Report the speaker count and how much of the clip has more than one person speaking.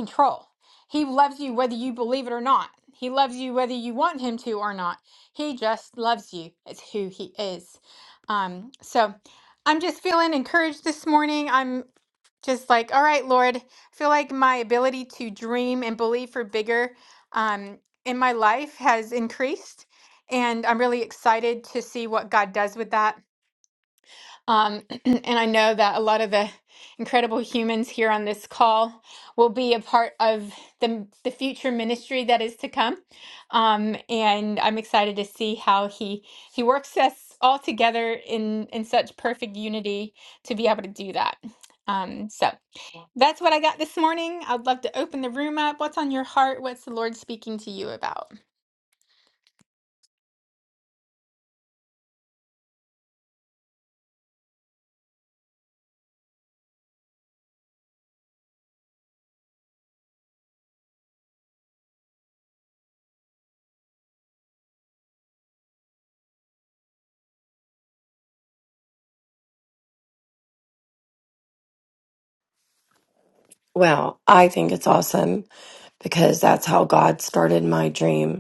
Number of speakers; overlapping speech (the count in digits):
2, no overlap